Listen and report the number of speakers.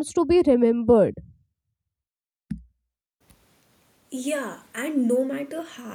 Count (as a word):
two